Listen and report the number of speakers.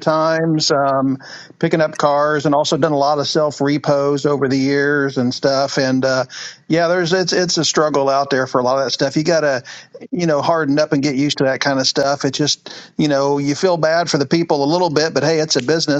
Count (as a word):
one